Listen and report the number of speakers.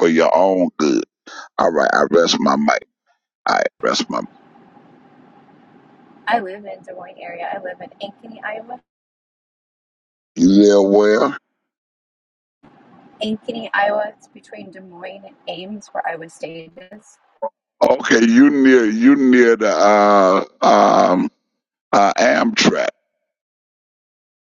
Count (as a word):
two